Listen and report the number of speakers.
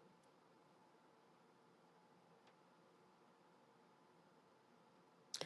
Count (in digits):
0